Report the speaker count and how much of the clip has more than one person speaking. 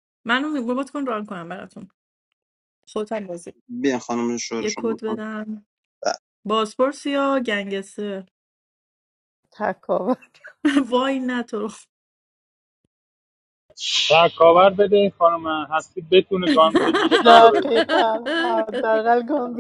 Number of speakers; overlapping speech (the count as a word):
four, about 5%